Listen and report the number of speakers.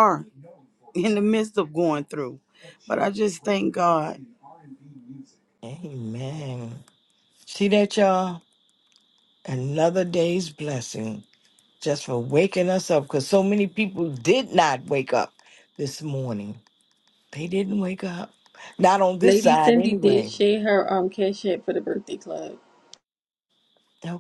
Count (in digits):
3